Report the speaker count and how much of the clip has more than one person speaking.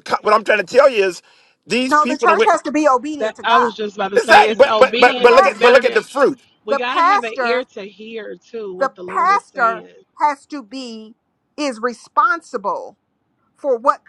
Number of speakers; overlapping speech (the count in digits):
3, about 36%